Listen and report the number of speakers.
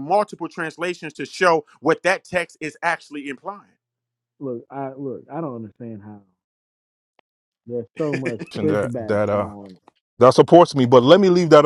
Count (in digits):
3